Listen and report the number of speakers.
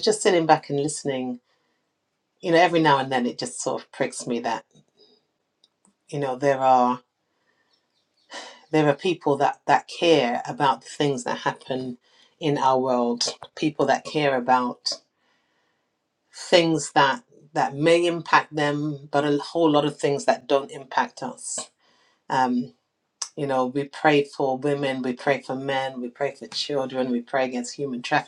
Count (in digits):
1